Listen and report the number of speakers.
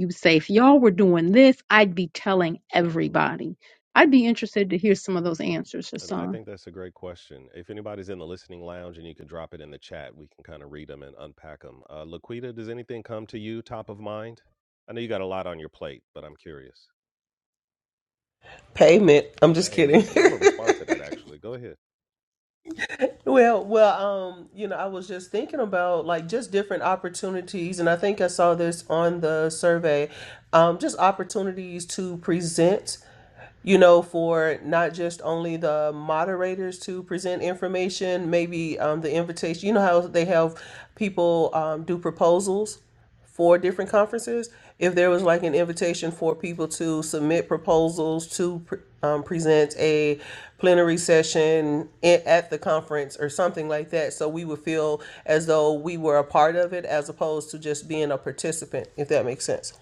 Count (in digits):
3